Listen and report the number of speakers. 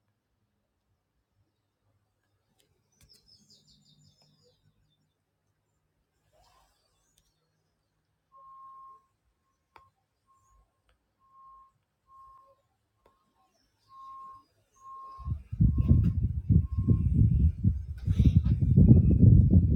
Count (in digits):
0